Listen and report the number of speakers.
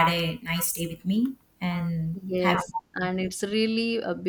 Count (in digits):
2